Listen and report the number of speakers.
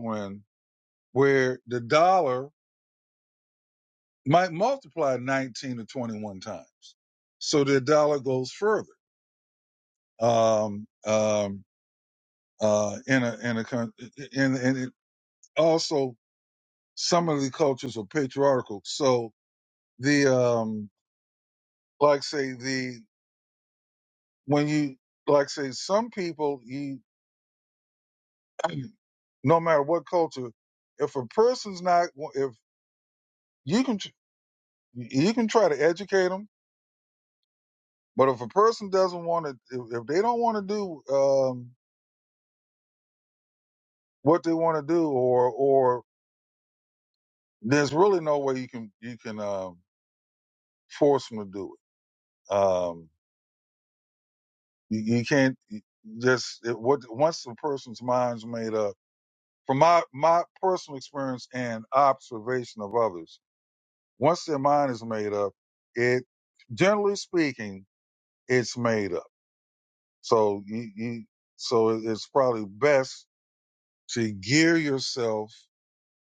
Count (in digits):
1